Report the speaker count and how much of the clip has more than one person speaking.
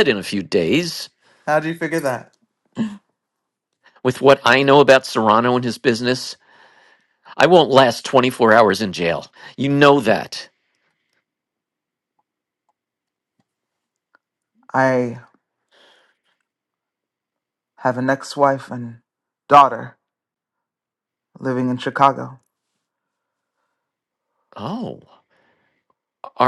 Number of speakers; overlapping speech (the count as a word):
two, no overlap